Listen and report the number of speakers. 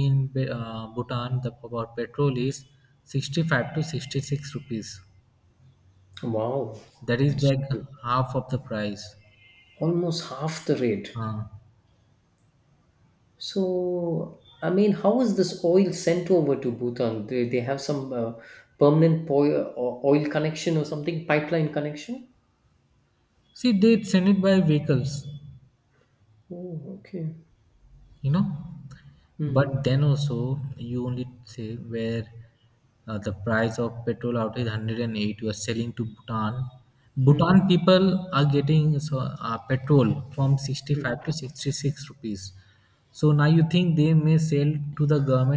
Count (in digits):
2